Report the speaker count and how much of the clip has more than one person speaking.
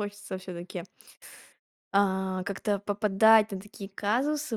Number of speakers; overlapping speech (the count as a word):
one, no overlap